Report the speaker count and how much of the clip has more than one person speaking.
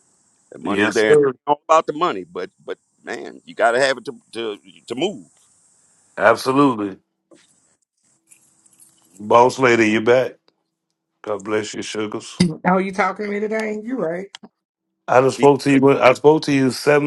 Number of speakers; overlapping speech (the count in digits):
3, about 4%